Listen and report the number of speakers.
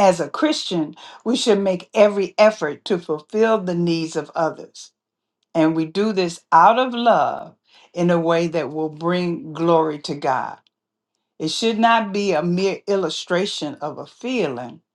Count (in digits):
1